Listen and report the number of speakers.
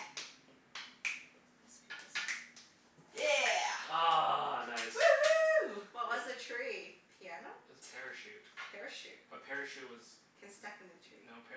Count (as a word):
four